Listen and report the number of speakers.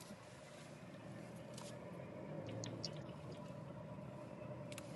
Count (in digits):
0